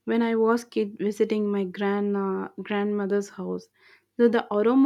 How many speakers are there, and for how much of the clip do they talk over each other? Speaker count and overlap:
one, no overlap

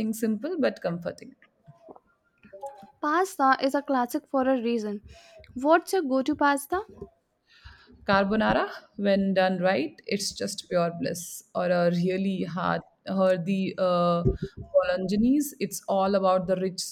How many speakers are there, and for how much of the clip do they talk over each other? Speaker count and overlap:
two, no overlap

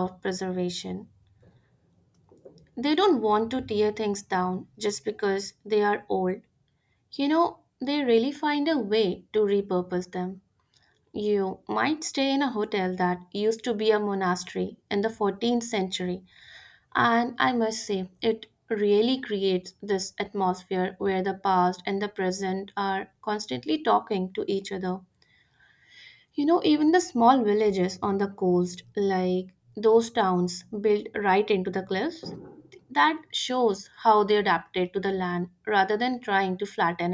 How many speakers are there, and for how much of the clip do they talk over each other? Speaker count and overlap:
one, no overlap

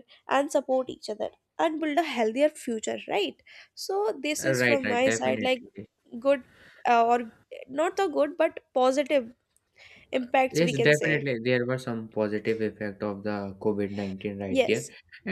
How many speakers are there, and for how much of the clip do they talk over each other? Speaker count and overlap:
two, about 13%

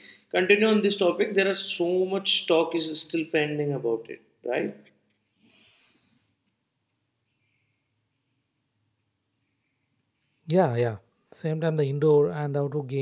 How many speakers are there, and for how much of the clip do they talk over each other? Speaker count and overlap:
two, no overlap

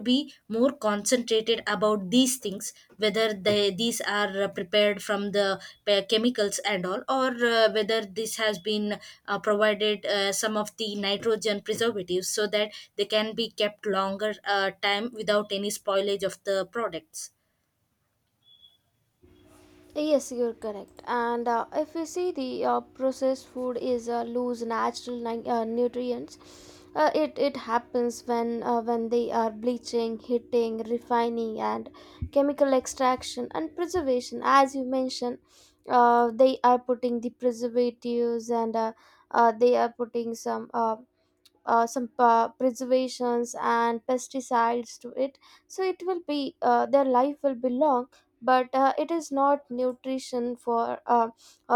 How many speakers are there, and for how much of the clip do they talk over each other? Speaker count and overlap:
two, no overlap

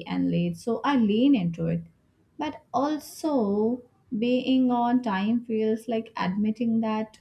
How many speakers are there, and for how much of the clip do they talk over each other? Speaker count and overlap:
one, no overlap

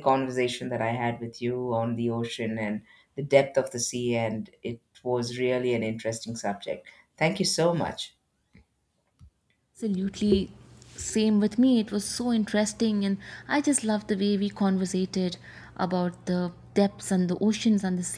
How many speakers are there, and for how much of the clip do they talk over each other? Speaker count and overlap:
two, no overlap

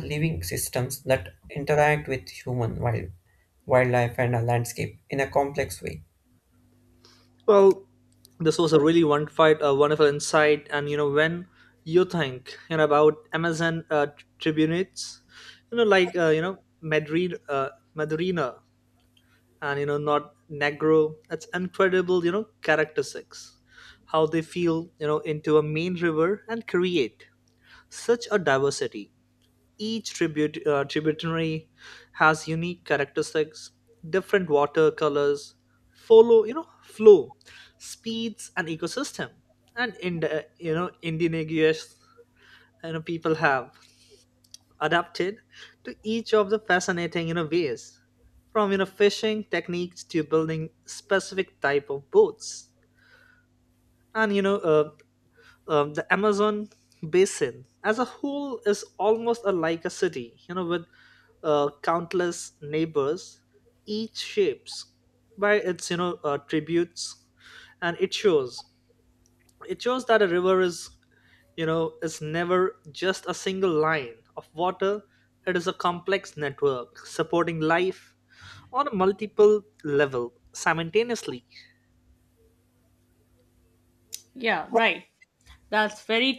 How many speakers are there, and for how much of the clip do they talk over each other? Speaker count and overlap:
three, no overlap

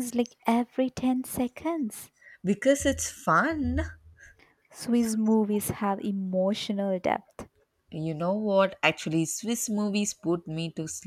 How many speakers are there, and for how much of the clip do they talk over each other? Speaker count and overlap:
two, no overlap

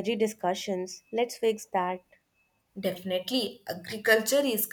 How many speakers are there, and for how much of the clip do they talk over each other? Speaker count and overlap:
two, no overlap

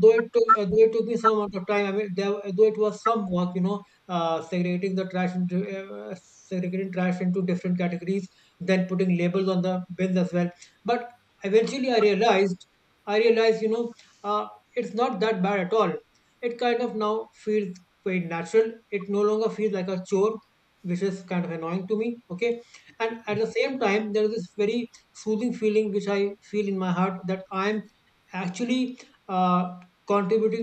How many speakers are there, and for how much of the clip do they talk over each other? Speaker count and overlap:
one, no overlap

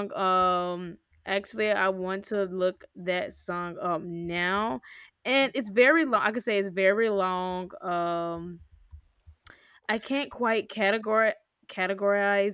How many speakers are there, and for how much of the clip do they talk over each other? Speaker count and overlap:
one, no overlap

